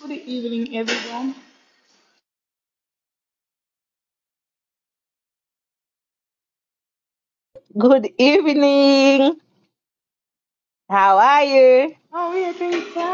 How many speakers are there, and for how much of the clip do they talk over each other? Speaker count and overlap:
two, no overlap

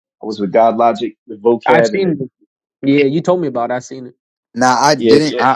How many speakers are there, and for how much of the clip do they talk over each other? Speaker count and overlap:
three, about 17%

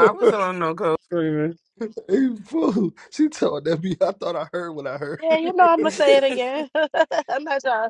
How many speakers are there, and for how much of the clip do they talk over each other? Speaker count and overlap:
three, no overlap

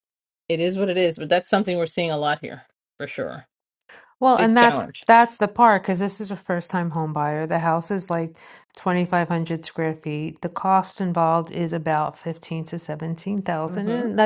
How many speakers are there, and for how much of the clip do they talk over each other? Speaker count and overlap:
two, about 8%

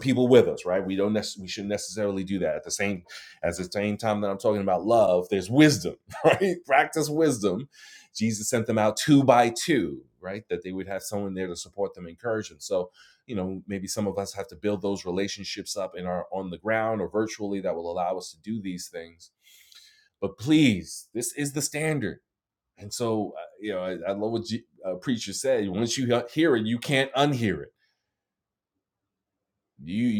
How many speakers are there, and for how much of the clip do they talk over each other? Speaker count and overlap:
one, no overlap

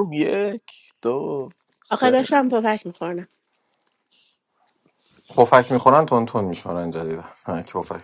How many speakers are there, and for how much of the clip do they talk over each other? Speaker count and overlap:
three, about 2%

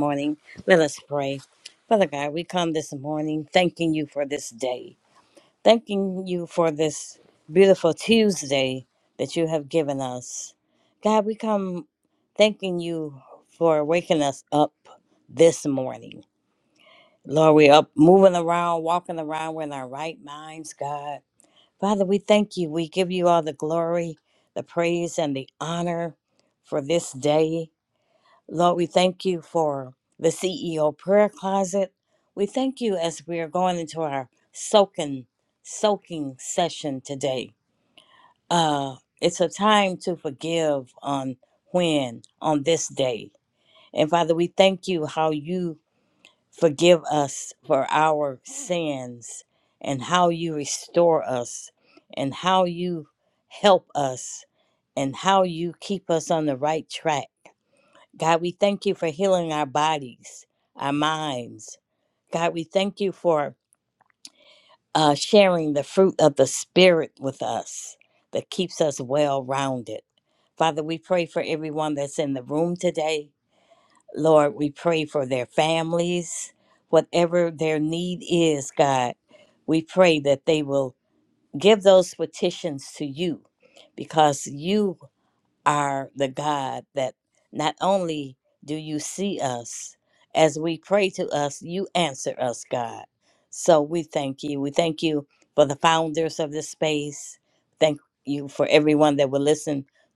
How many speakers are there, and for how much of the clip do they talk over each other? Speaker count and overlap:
one, no overlap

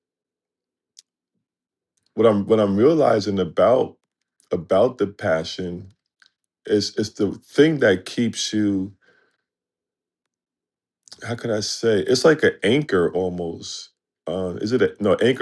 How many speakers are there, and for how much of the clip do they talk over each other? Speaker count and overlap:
one, no overlap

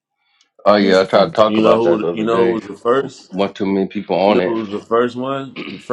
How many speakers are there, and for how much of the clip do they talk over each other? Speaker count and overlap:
two, about 26%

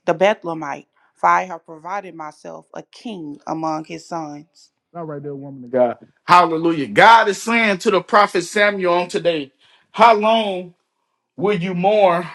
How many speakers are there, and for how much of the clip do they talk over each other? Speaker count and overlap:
two, no overlap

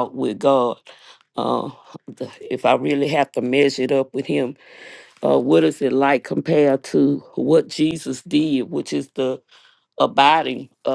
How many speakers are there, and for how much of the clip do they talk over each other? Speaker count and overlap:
one, no overlap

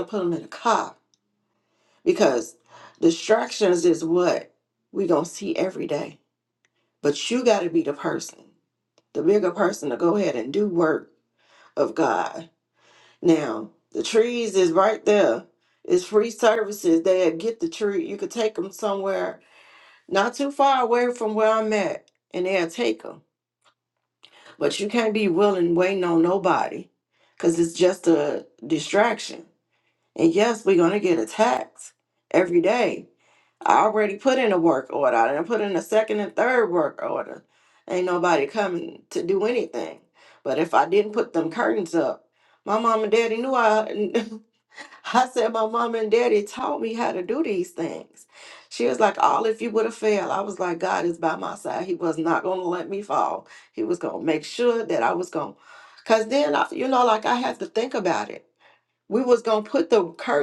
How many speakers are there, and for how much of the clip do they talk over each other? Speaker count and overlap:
one, no overlap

